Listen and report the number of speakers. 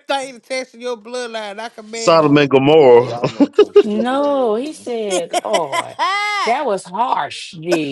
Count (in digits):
4